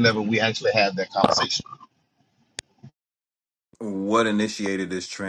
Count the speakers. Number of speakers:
2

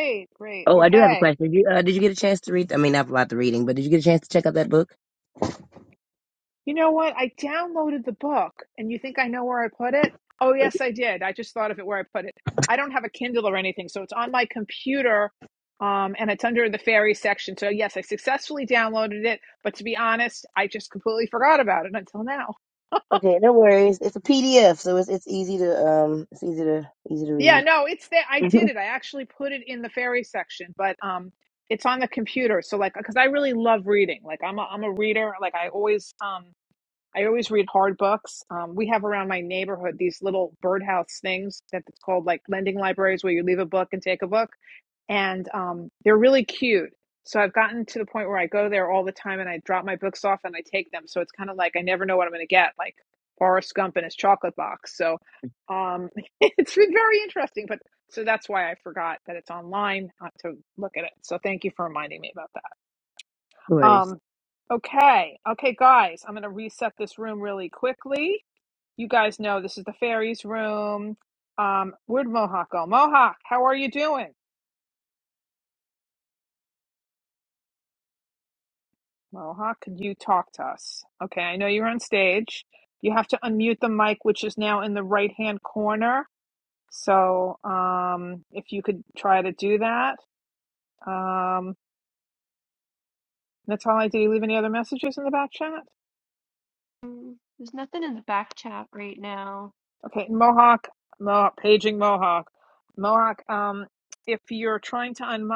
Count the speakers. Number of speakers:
3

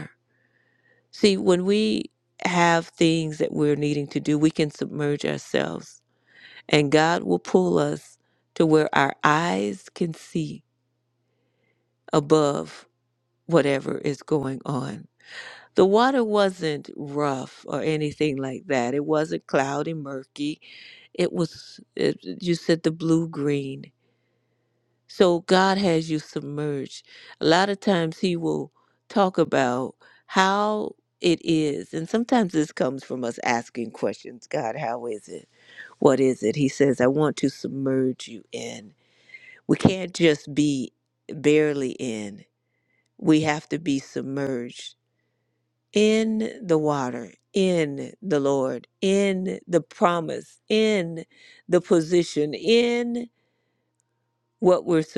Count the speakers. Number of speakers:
1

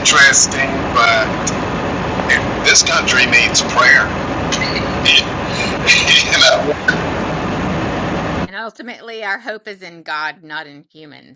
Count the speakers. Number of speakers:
2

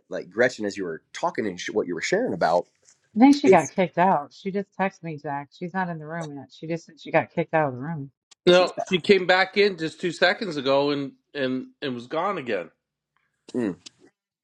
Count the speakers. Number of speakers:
3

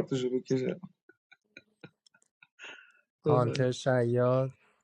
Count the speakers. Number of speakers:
2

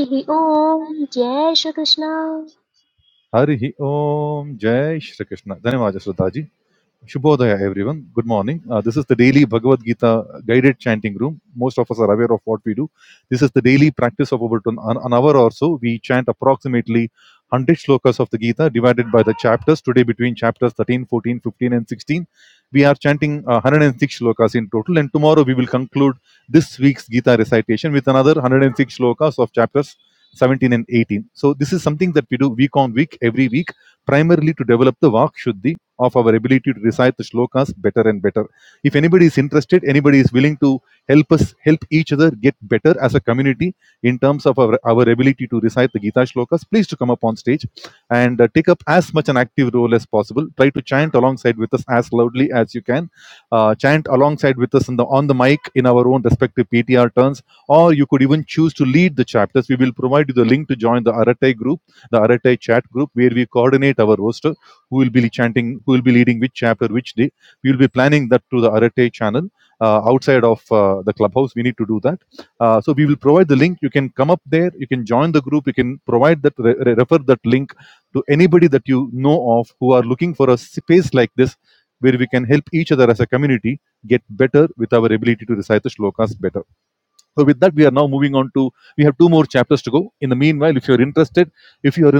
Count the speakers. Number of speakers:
2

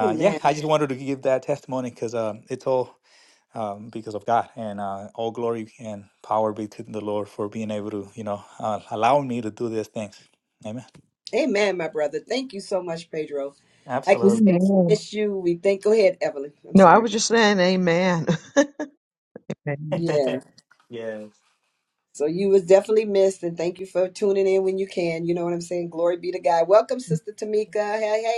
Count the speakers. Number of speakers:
3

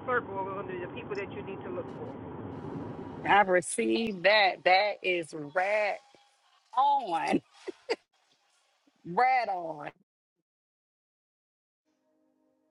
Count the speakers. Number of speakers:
2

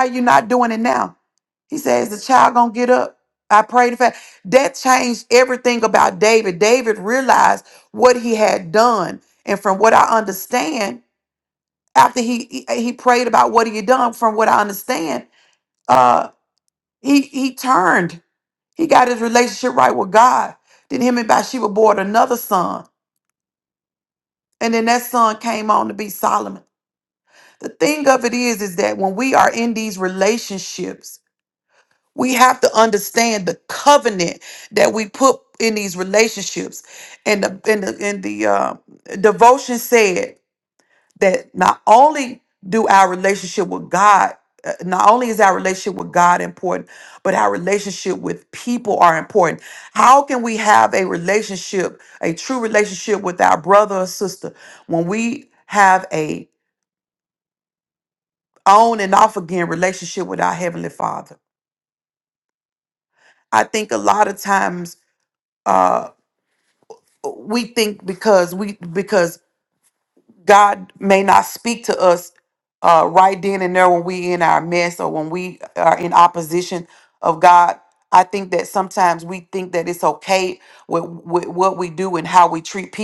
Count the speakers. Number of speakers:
1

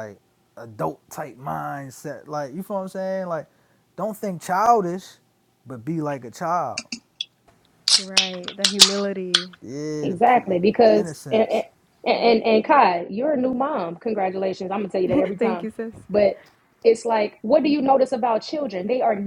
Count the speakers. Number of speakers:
3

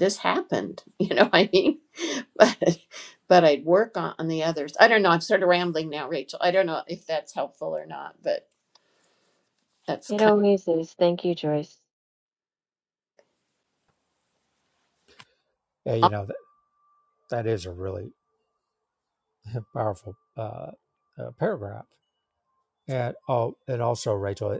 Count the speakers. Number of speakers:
3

